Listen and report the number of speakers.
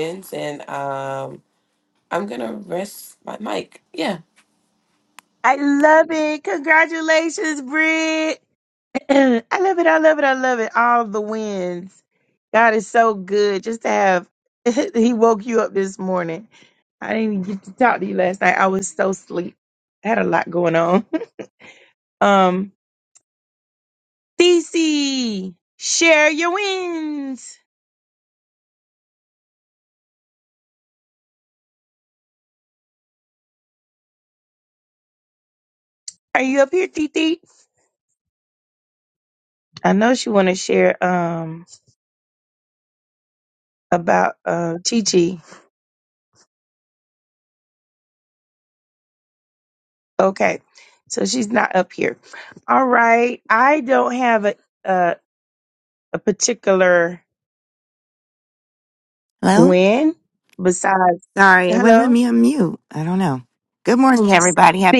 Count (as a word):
three